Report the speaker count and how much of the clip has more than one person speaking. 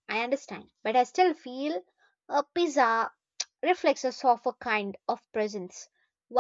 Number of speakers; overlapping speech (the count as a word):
one, no overlap